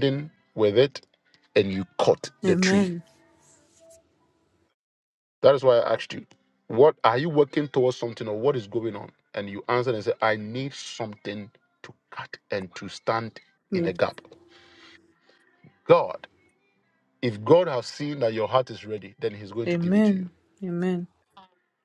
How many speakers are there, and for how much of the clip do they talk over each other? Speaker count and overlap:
two, about 5%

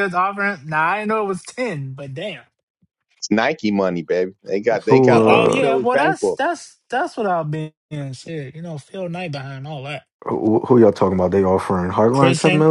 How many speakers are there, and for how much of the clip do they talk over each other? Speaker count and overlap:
three, about 17%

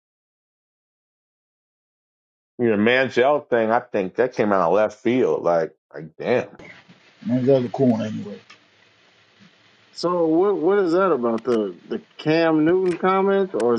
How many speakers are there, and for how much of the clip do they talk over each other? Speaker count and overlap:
three, no overlap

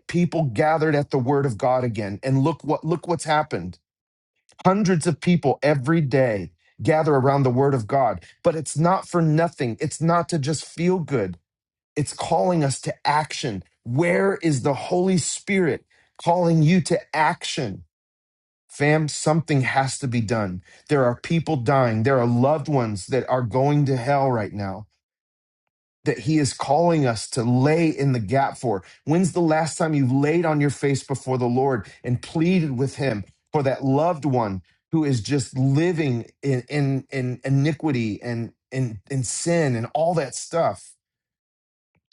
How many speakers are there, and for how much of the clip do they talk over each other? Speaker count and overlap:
one, no overlap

